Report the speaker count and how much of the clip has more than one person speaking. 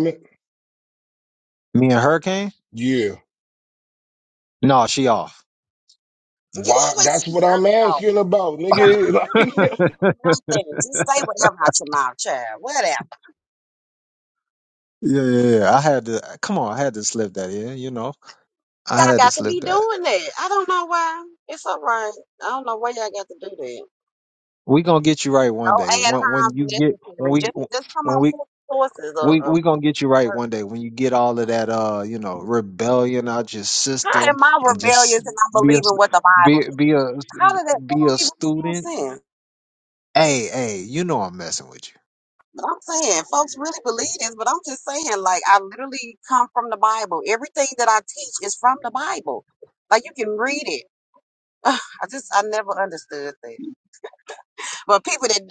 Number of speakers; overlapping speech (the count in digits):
3, about 15%